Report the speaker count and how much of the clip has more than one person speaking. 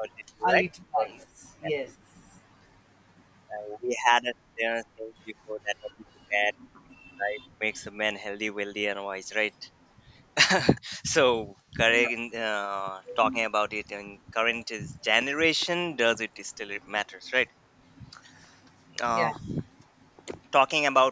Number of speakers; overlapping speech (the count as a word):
two, about 4%